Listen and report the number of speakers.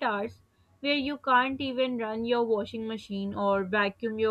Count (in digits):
1